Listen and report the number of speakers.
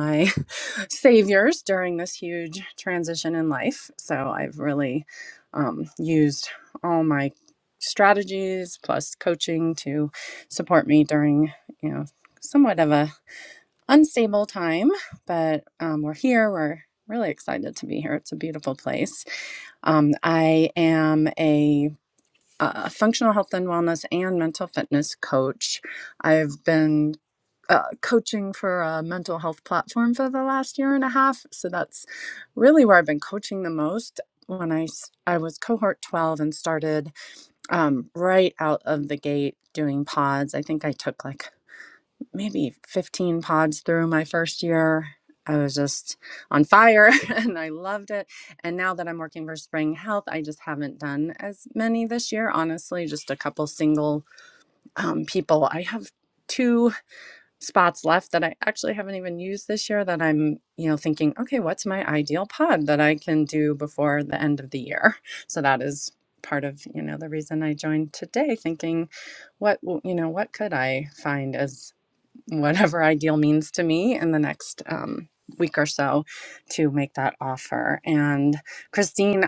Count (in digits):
1